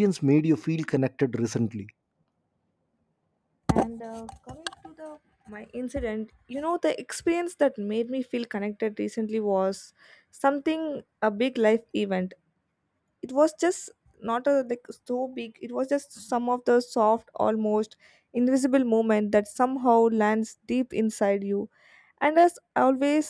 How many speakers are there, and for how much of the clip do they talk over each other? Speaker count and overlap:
2, no overlap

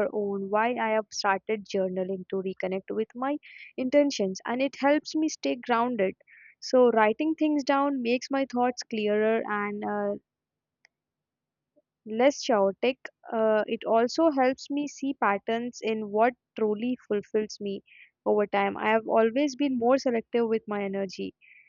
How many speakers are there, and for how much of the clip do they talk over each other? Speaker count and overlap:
1, no overlap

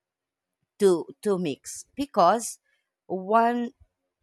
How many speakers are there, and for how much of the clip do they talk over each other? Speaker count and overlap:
1, no overlap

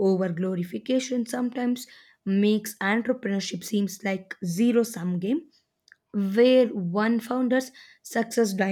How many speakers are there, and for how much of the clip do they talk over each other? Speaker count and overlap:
1, no overlap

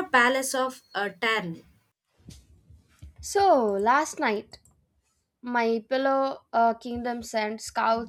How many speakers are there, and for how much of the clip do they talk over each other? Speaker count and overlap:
2, no overlap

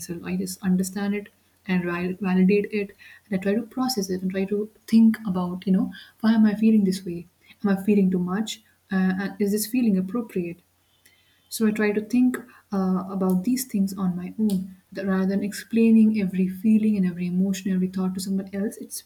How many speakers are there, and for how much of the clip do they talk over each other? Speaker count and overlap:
1, no overlap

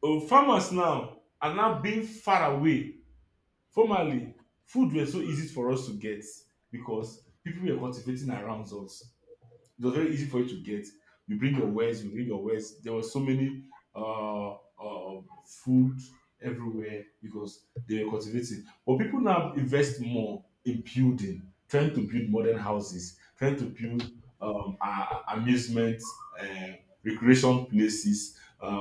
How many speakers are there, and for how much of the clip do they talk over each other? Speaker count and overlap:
1, no overlap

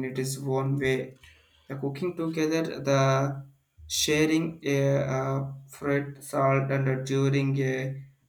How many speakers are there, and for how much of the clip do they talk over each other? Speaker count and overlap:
1, no overlap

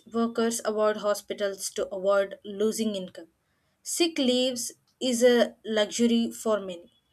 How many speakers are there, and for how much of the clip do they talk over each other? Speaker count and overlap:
1, no overlap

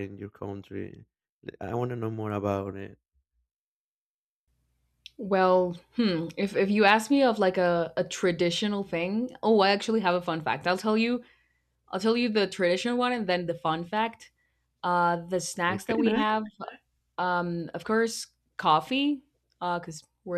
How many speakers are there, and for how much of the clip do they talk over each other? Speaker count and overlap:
2, about 3%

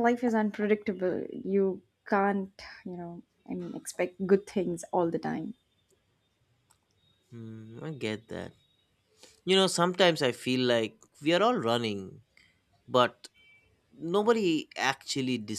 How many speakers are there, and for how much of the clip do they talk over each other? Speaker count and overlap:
2, no overlap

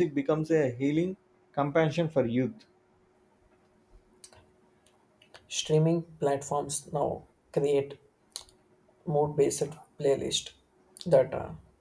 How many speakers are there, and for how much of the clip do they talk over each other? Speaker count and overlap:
2, no overlap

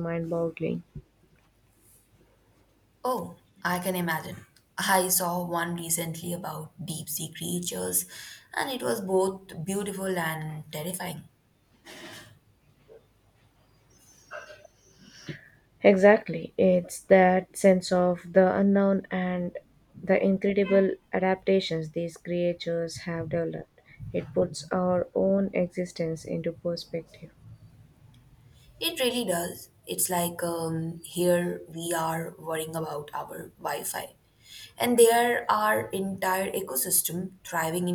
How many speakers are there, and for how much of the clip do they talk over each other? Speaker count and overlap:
2, no overlap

